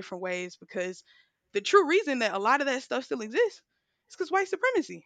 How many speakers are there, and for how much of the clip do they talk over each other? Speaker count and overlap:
1, no overlap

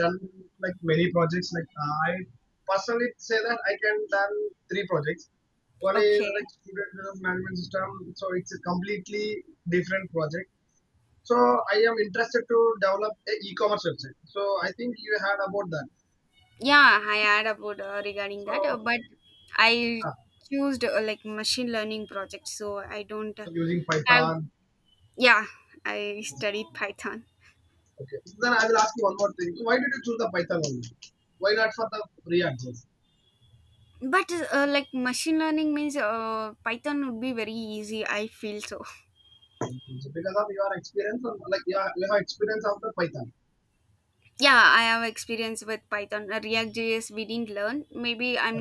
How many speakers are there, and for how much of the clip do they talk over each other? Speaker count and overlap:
2, about 3%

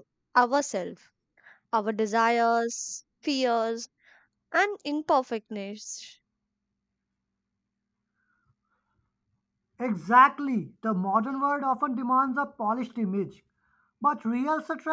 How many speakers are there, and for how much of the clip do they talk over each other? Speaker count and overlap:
2, no overlap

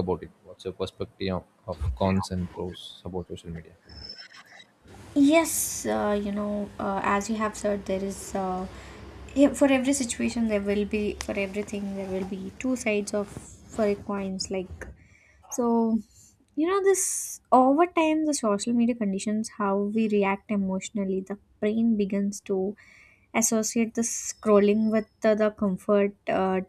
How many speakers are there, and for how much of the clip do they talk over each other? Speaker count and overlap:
2, no overlap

